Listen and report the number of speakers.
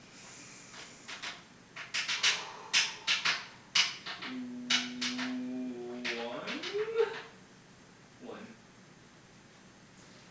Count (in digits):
1